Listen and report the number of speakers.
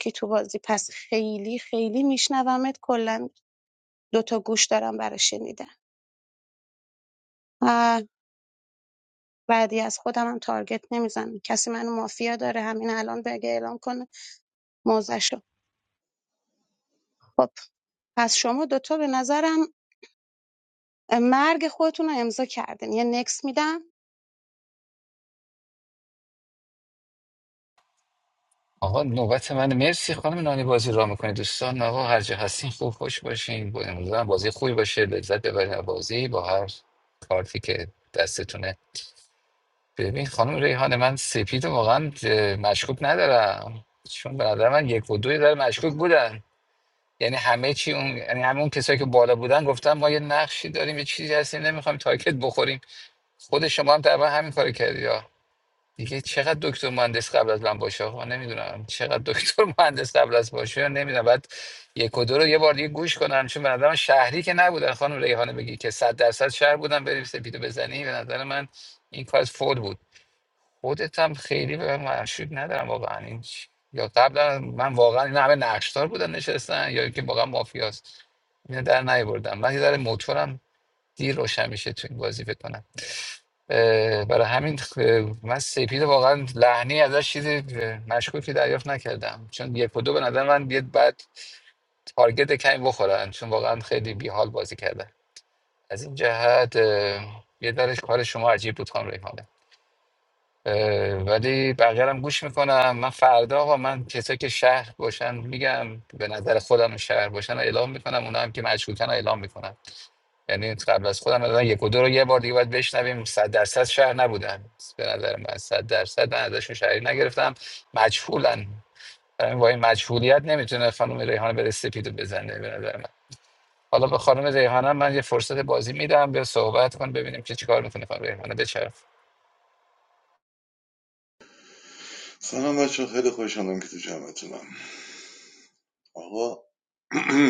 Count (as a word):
three